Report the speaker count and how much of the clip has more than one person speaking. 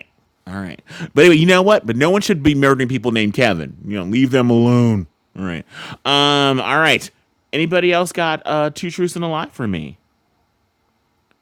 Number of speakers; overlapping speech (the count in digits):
1, no overlap